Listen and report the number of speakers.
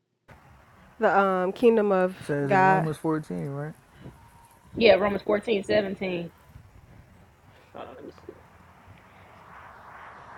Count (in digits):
3